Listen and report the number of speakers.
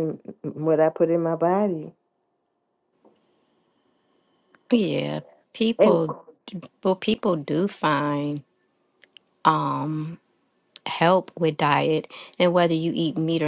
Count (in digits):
2